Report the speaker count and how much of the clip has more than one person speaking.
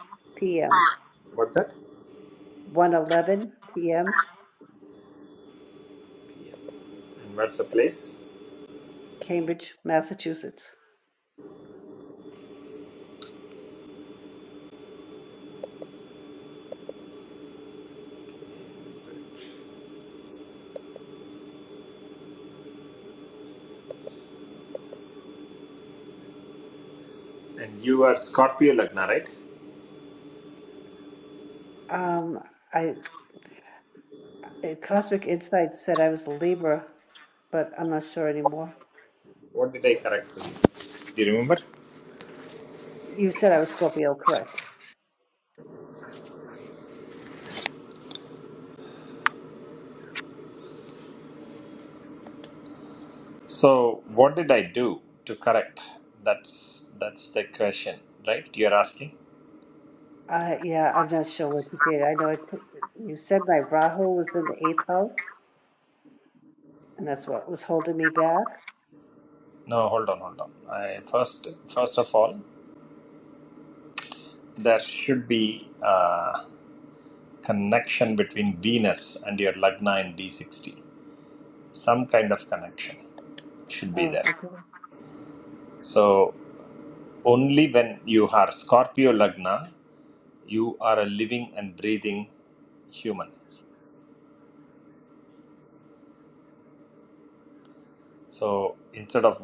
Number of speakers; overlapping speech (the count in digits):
2, under 1%